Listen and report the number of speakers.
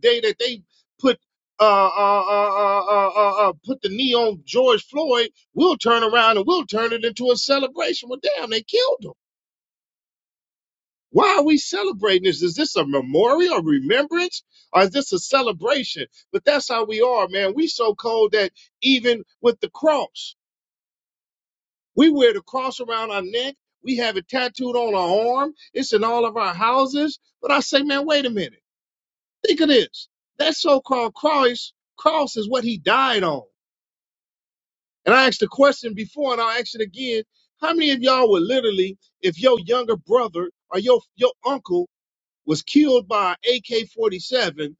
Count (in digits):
1